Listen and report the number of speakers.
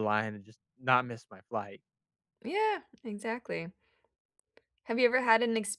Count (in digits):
2